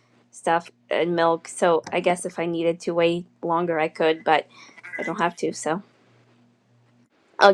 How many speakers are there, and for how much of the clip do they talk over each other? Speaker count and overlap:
1, no overlap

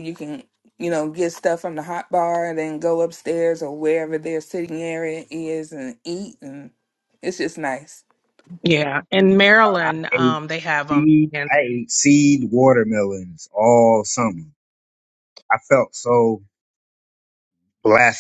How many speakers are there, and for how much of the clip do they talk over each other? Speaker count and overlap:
3, about 5%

